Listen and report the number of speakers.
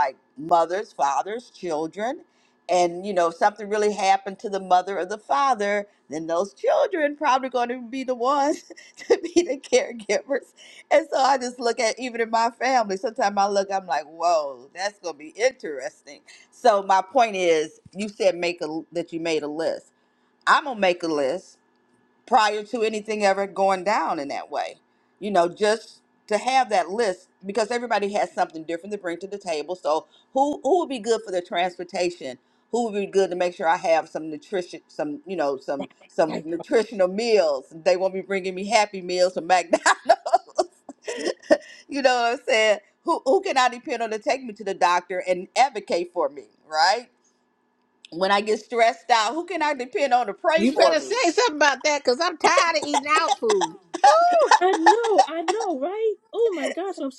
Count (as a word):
three